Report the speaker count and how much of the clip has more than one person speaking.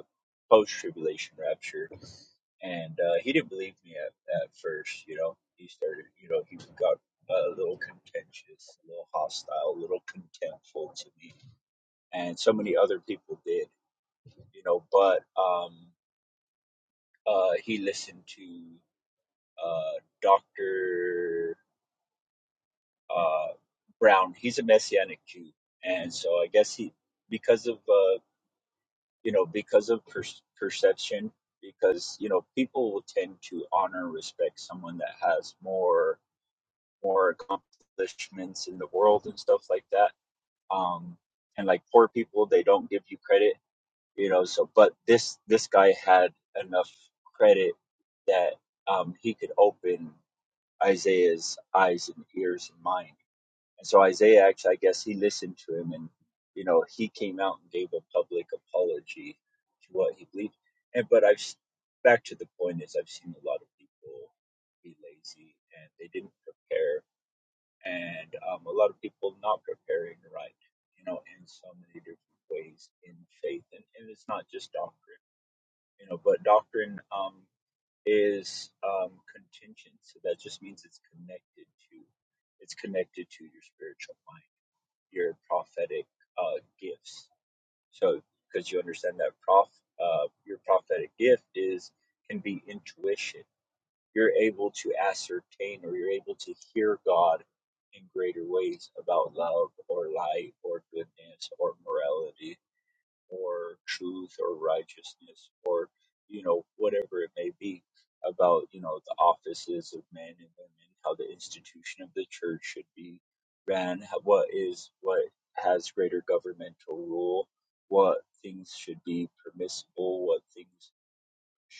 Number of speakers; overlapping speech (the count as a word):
one, no overlap